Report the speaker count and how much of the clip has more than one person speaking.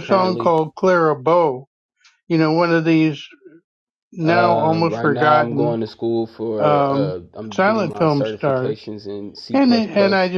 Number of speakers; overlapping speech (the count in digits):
2, about 43%